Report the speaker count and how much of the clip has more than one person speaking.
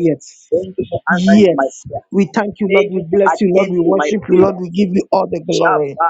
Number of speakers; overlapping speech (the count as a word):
two, about 47%